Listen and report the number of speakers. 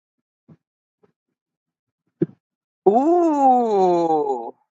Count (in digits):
1